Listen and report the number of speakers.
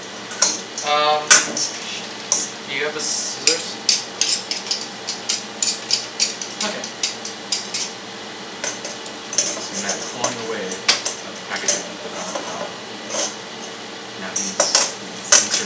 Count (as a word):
two